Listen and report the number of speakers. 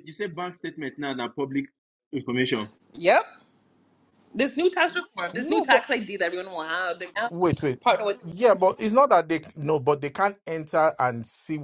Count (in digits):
3